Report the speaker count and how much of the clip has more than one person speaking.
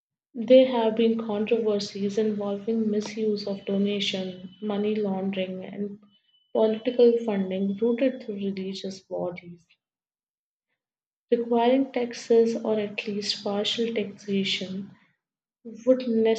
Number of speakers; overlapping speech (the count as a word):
one, no overlap